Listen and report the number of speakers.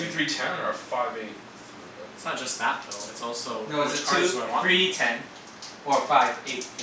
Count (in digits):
3